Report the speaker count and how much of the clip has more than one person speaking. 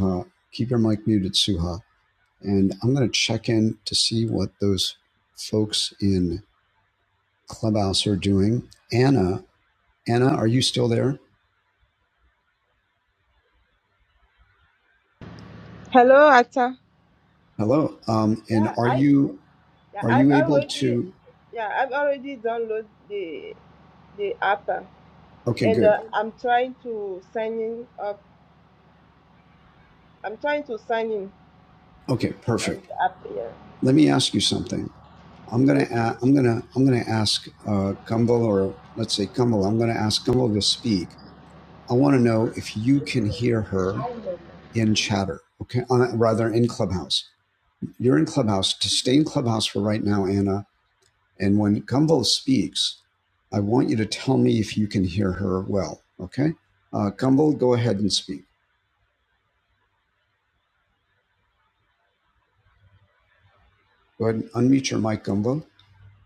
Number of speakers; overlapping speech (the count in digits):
2, about 4%